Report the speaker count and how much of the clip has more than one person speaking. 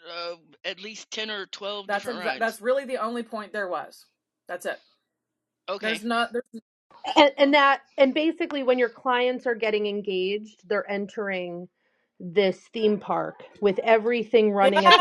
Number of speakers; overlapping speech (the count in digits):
3, about 8%